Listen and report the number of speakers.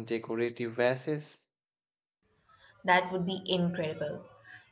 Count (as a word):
two